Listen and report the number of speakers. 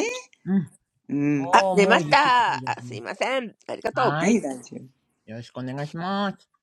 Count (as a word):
three